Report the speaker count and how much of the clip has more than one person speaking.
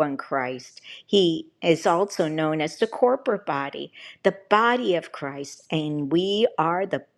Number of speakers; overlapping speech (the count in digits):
1, no overlap